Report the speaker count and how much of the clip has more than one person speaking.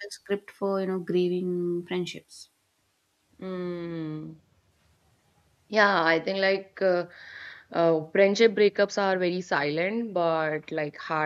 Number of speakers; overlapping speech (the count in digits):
2, no overlap